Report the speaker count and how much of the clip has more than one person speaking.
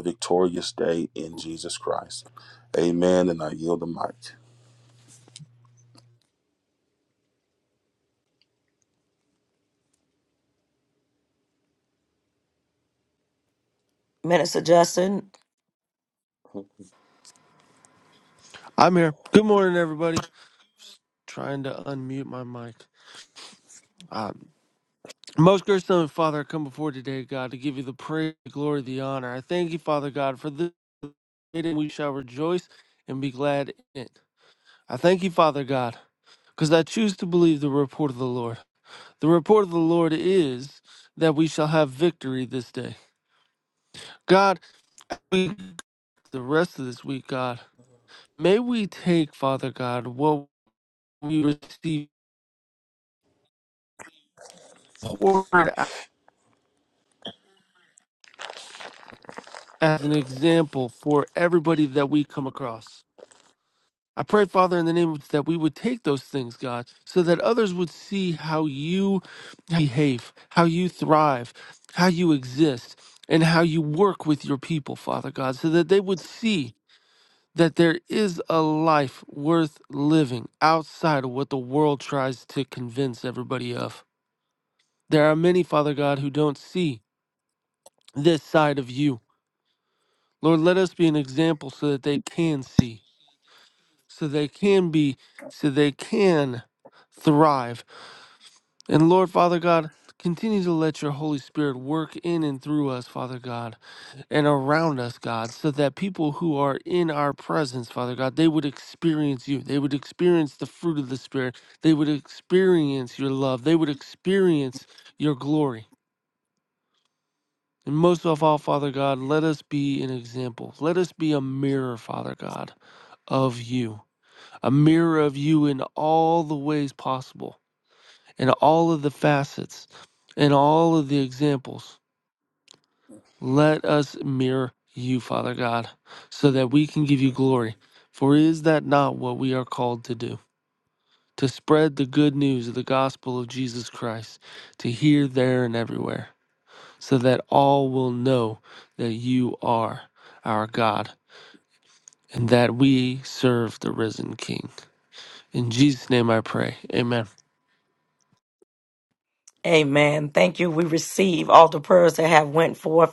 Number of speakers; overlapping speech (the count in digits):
3, no overlap